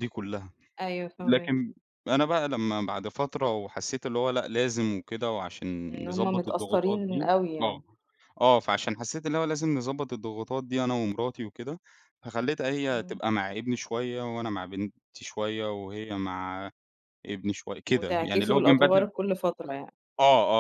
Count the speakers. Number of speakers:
2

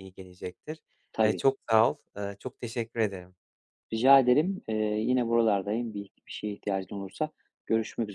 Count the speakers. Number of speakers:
2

